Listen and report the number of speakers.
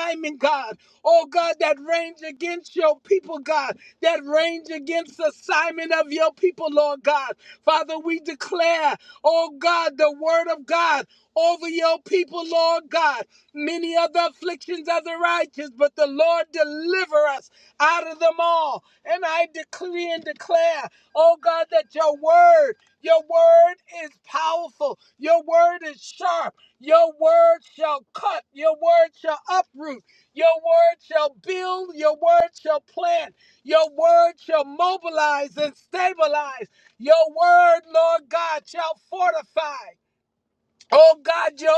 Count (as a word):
one